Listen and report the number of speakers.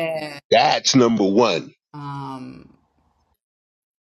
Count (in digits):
2